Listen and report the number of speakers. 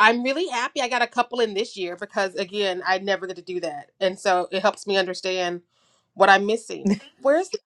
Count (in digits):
1